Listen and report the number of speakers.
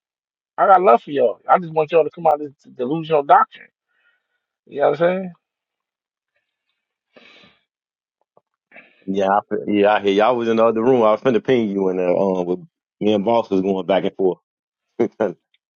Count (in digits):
2